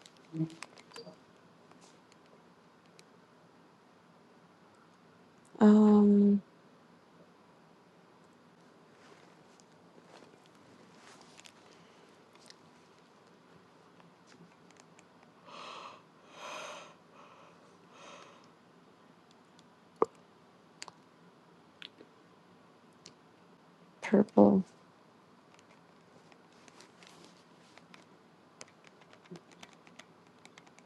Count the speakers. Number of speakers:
one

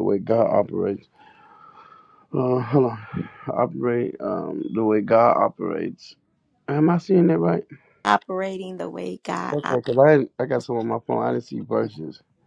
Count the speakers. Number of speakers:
two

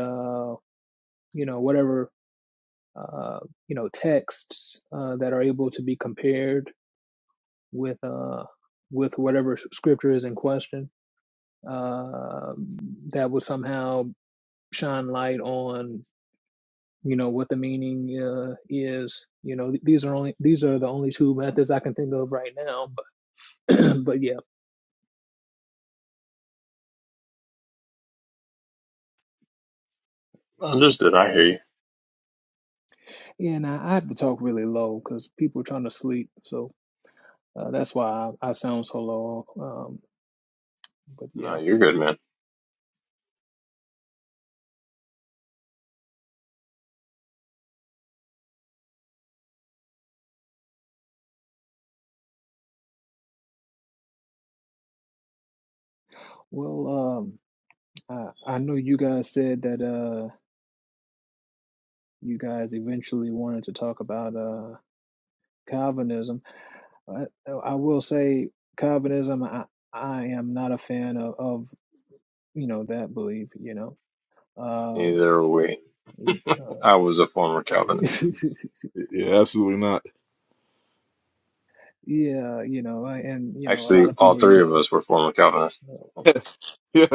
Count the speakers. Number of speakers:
three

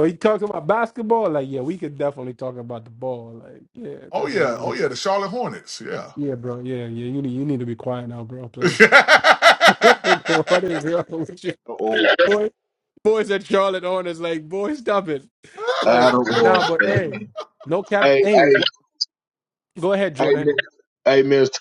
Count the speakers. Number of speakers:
three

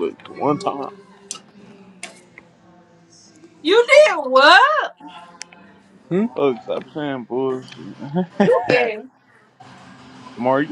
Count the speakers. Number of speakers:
three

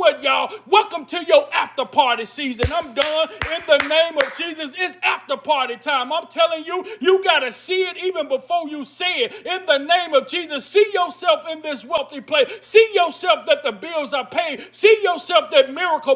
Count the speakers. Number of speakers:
one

